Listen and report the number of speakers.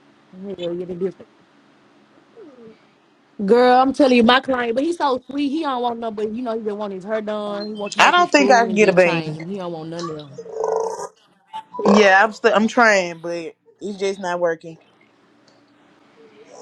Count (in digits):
2